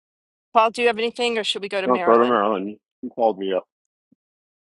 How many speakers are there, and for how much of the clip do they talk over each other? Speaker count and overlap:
2, about 10%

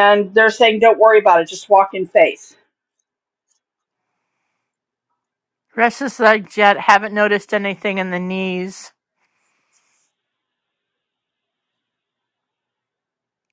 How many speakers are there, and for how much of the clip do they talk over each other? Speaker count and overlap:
2, no overlap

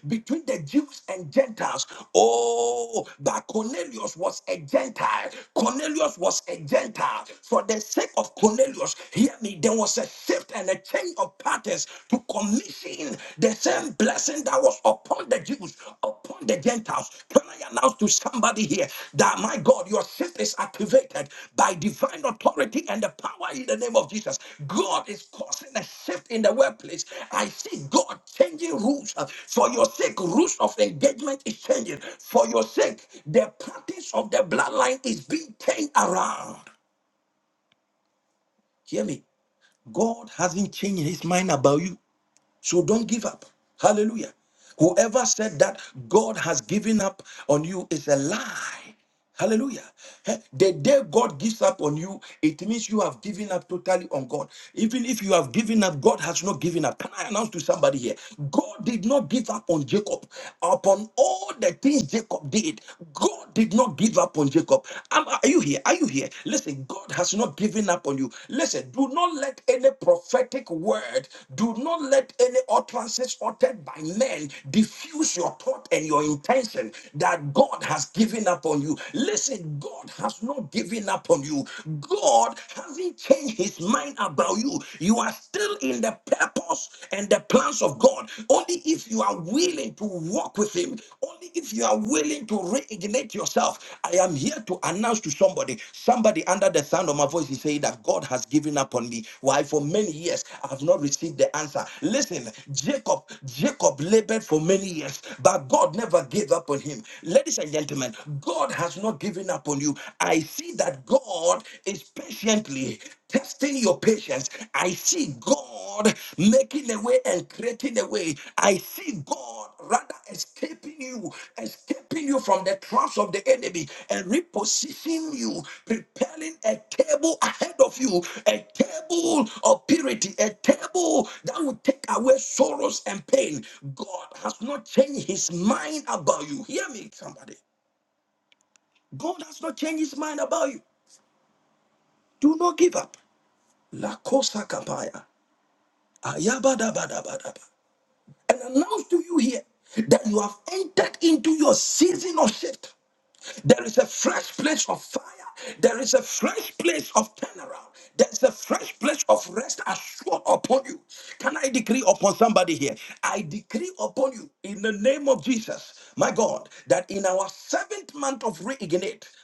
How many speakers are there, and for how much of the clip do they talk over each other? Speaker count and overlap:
1, no overlap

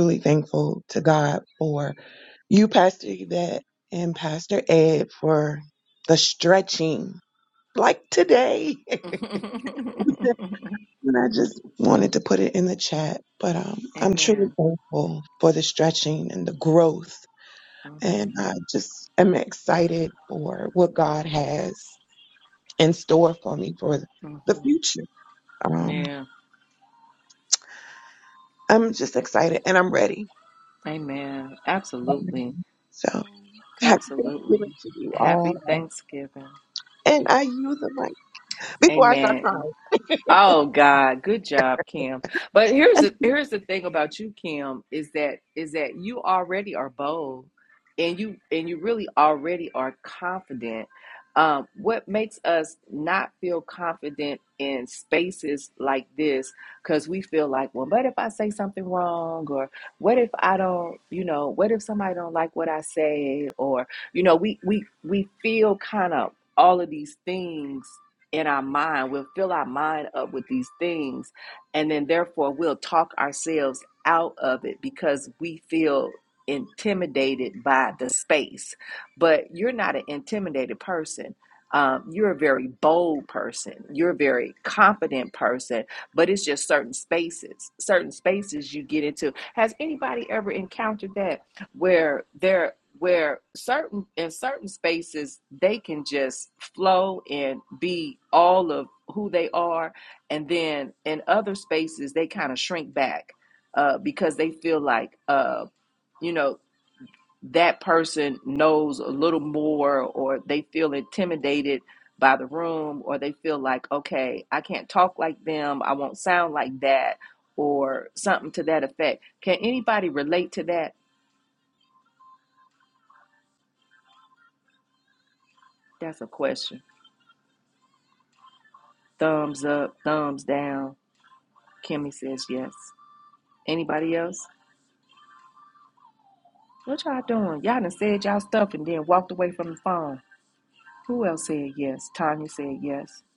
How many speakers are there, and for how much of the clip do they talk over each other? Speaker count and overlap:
2, about 2%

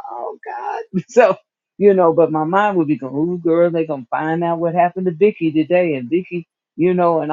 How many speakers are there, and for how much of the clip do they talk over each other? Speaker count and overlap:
1, no overlap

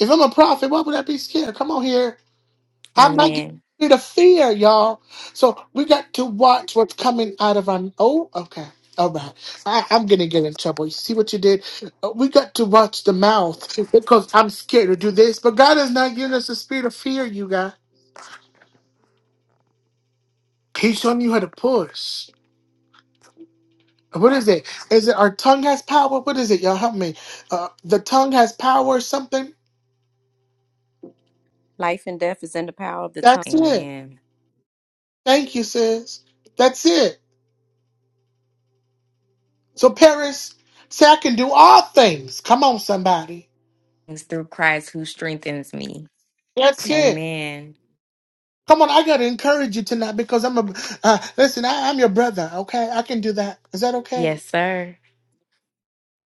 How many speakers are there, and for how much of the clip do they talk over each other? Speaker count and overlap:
3, about 3%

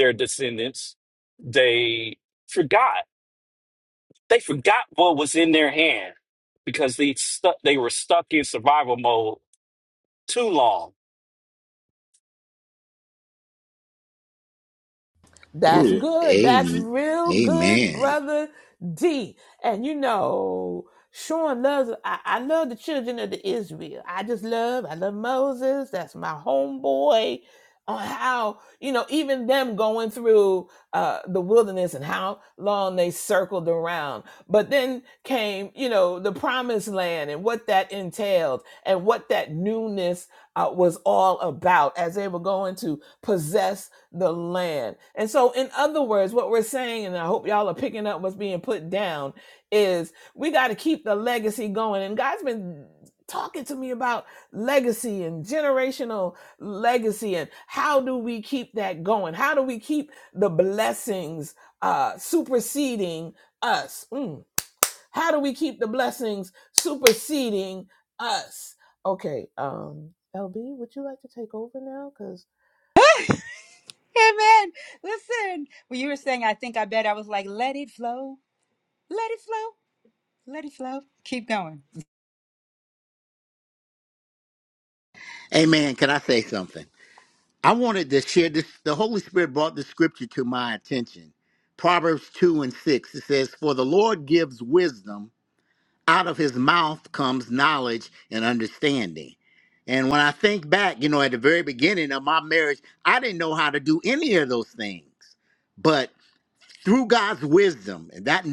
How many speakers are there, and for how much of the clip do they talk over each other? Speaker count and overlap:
4, about 2%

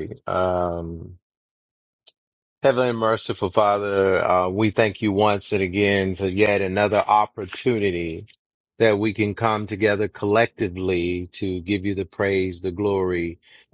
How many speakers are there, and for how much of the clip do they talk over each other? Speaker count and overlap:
1, no overlap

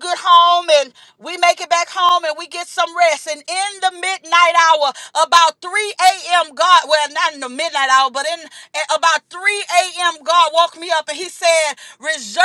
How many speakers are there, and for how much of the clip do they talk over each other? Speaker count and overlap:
1, no overlap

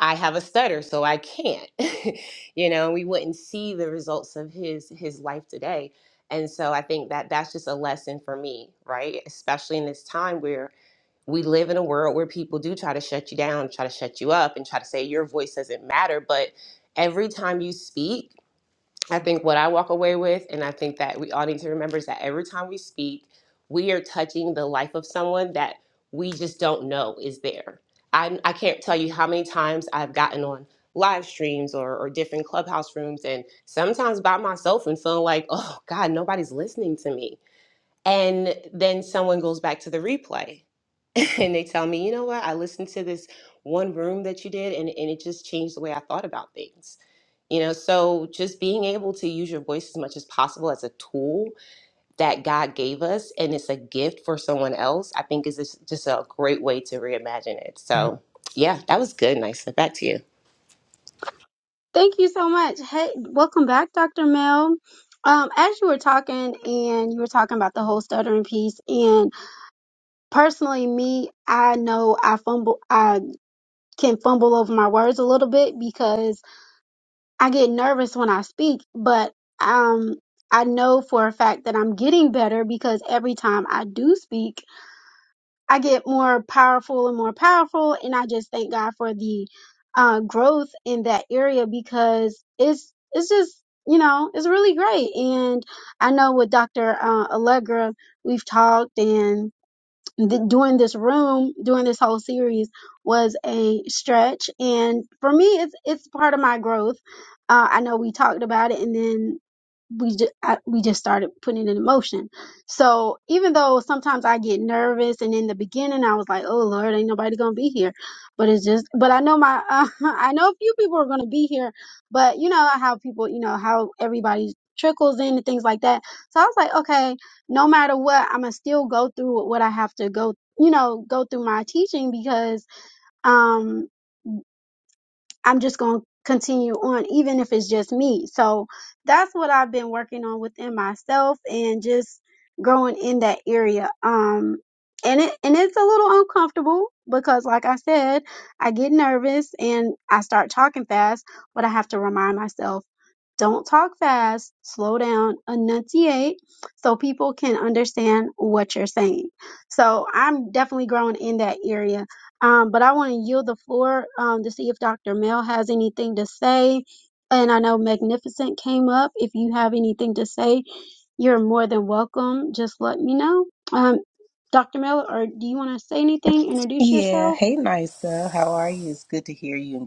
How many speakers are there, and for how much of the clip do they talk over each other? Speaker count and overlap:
3, under 1%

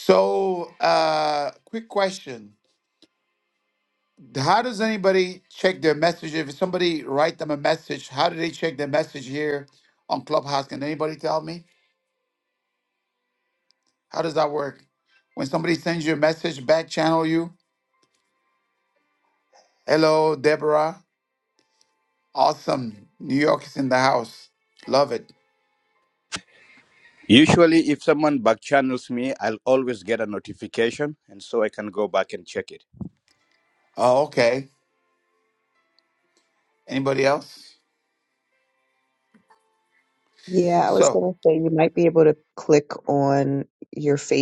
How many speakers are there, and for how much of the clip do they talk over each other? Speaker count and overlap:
3, under 1%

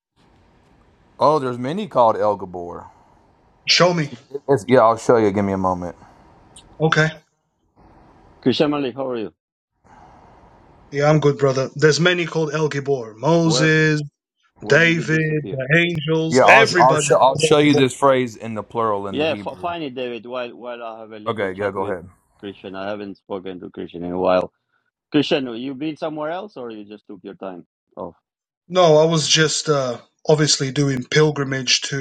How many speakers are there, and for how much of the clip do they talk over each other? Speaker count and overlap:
3, about 12%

